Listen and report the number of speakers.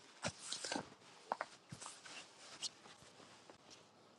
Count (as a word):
zero